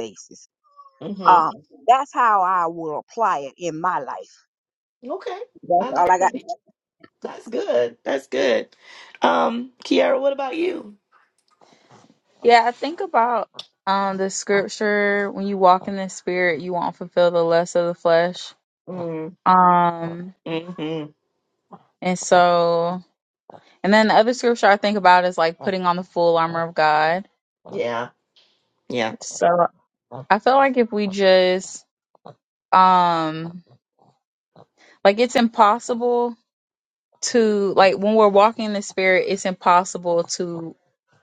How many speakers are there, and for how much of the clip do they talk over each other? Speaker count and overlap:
3, about 2%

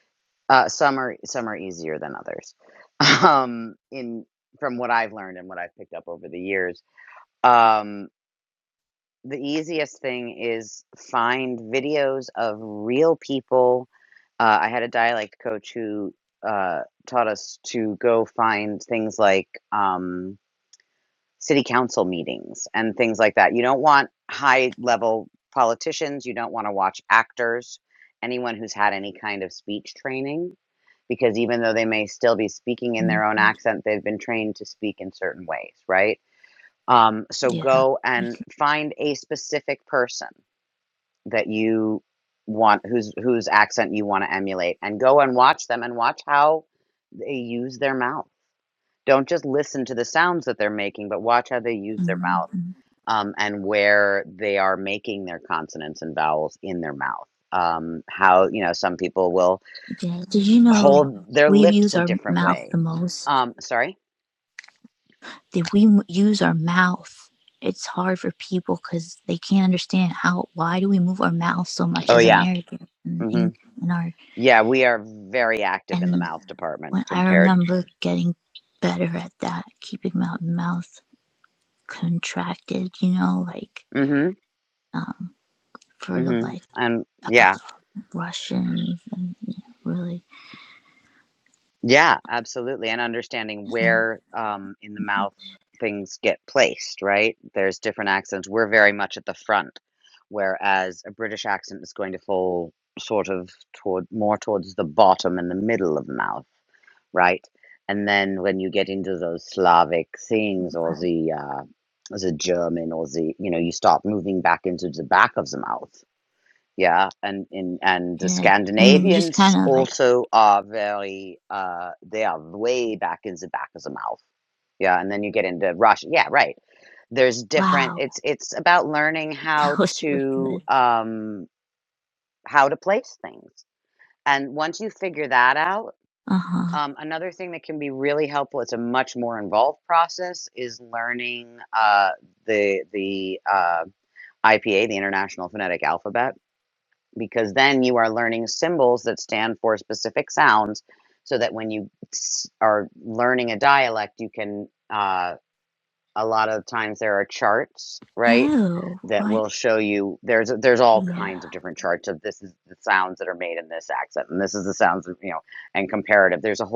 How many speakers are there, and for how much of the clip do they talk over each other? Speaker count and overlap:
2, about 6%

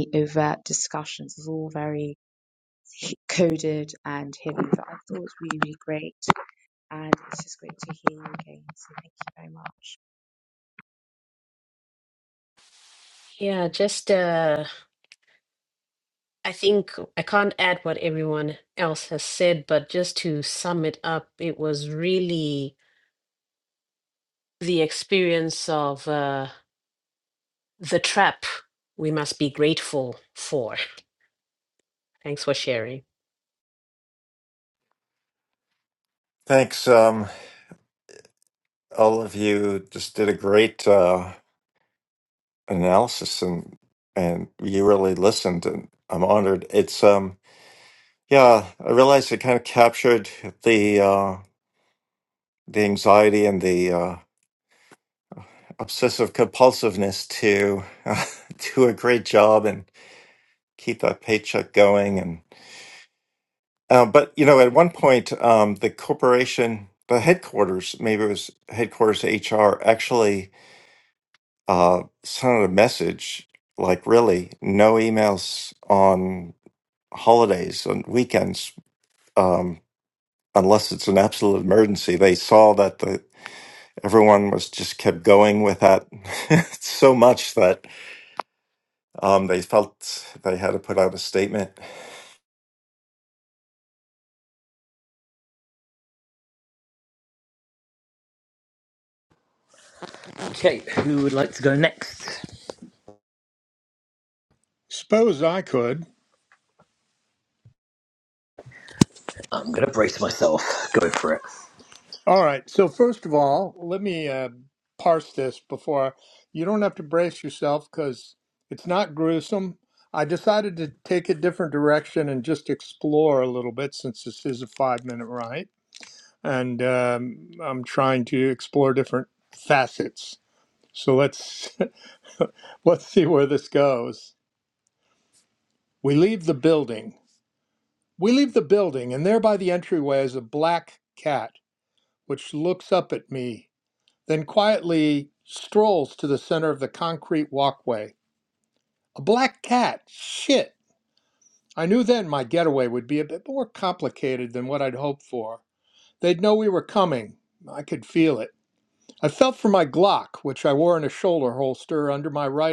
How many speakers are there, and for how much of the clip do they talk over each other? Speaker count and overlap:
5, no overlap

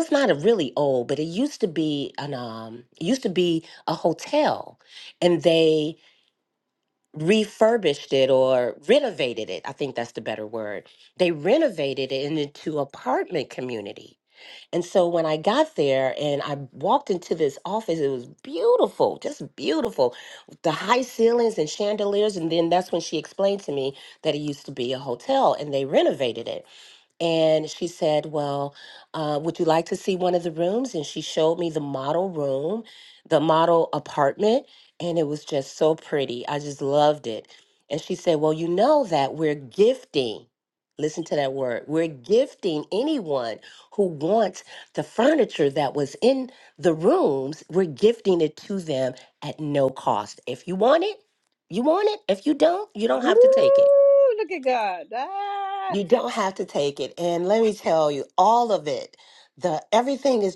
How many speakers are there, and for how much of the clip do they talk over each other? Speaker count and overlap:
2, about 1%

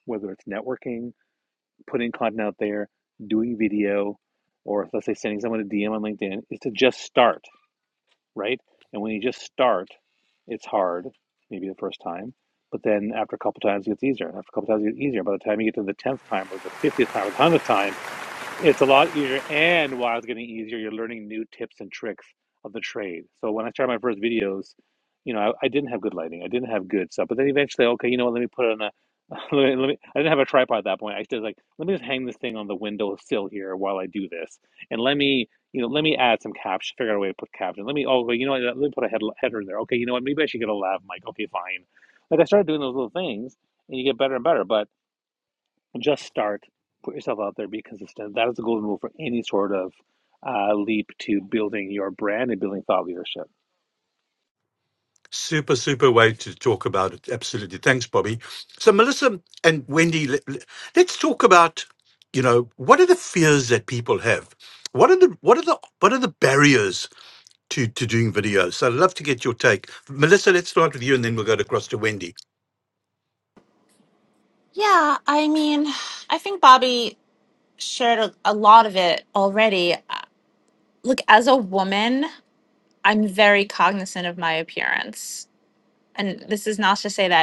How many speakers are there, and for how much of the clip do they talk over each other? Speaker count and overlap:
3, no overlap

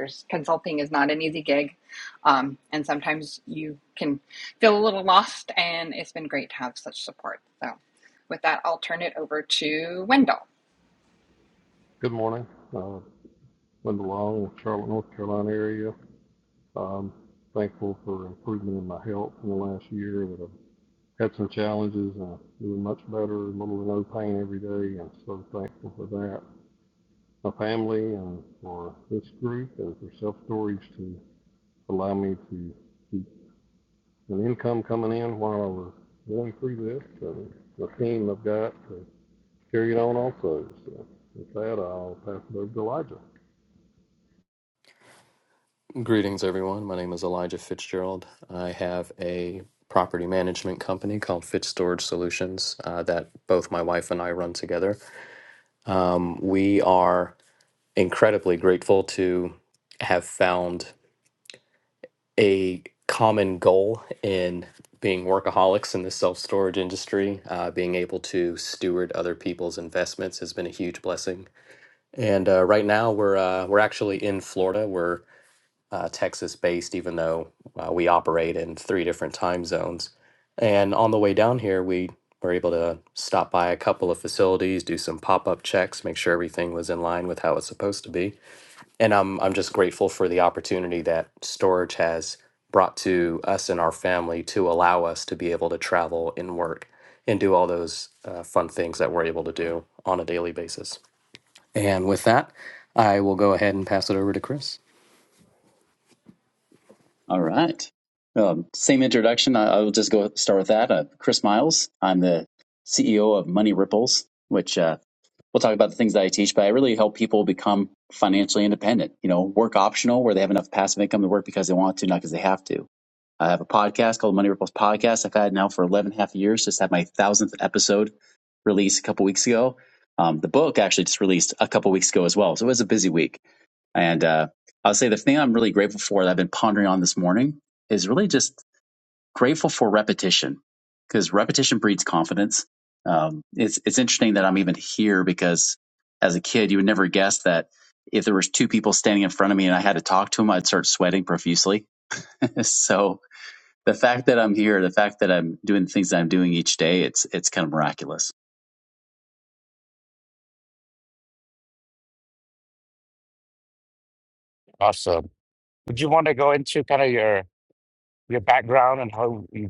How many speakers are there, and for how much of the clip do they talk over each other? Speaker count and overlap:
5, no overlap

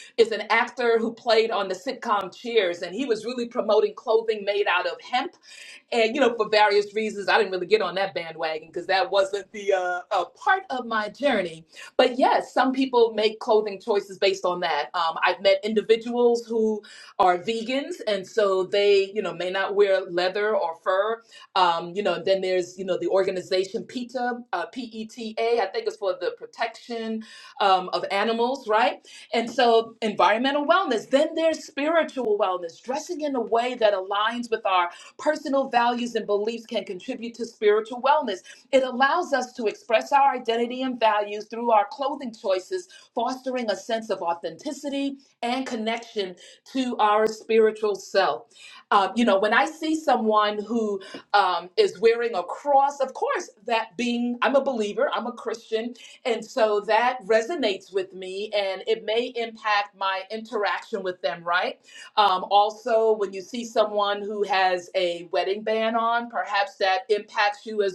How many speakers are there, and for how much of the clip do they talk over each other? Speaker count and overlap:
1, no overlap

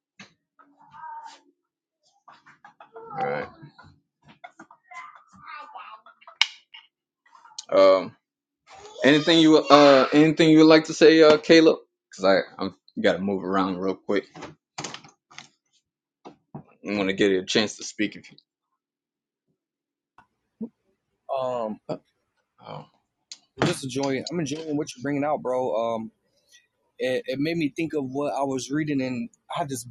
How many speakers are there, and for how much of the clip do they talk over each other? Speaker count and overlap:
2, no overlap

